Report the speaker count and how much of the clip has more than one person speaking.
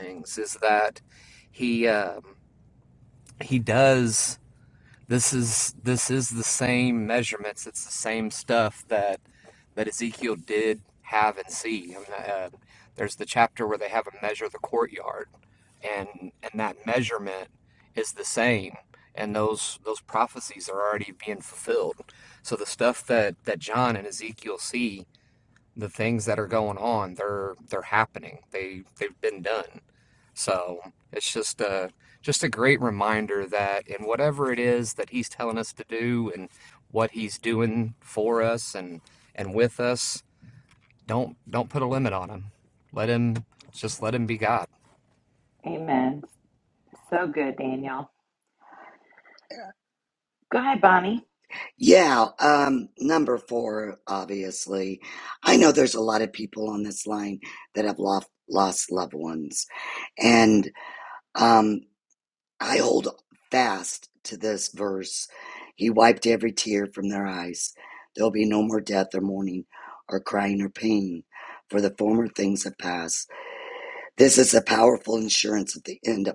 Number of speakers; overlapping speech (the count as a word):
three, no overlap